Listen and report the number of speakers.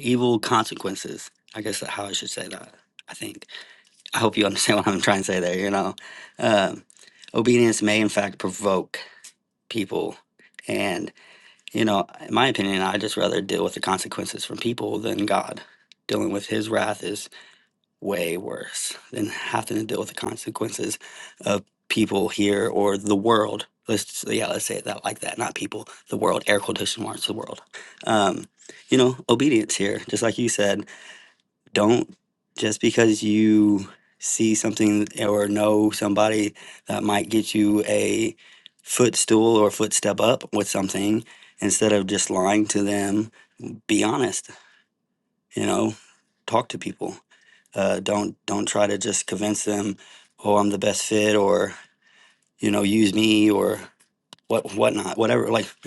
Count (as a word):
one